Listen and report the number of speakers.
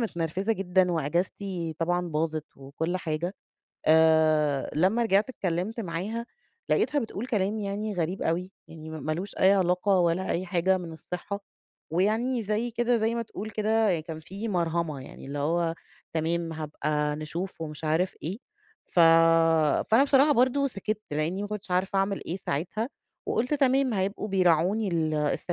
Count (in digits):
1